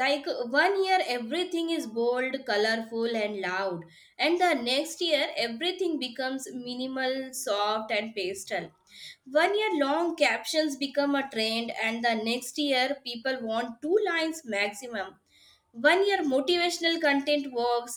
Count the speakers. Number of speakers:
one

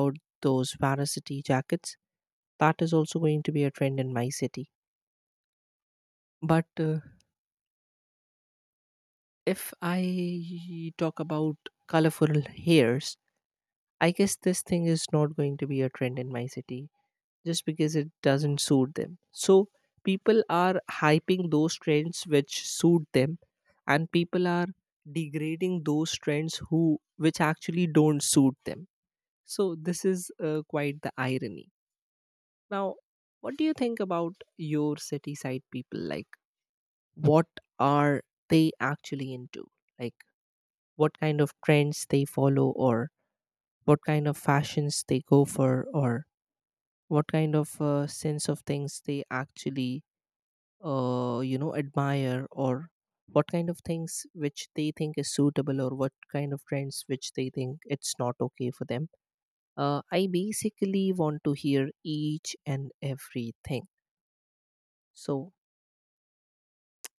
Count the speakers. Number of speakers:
one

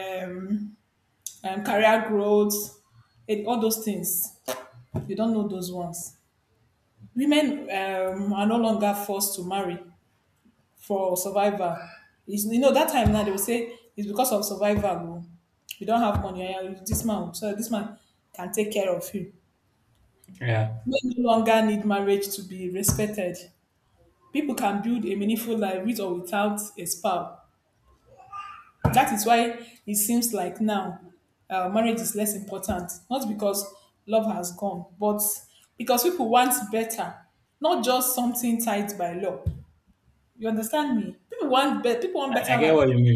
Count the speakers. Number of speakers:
two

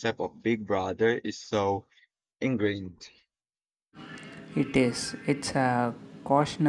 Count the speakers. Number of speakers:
two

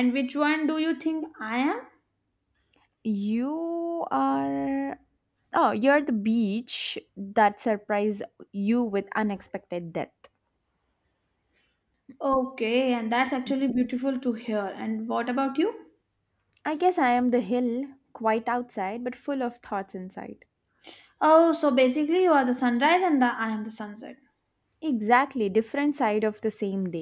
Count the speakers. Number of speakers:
two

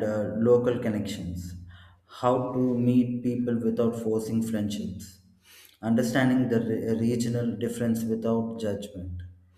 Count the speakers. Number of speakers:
one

